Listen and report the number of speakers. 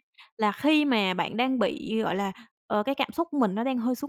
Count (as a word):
one